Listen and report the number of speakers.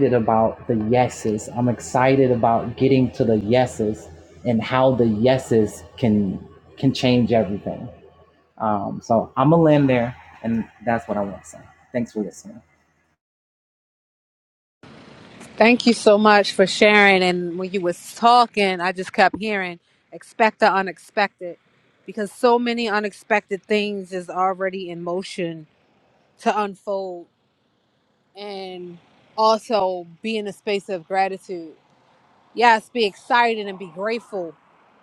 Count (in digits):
2